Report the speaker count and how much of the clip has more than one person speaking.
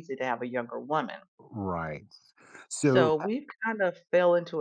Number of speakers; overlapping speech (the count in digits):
2, about 8%